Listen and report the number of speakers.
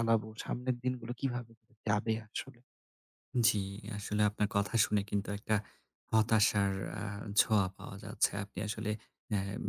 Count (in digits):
2